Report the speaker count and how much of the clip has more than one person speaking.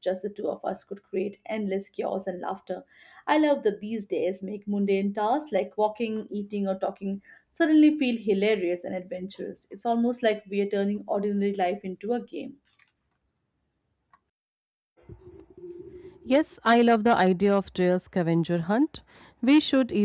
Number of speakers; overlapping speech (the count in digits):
2, no overlap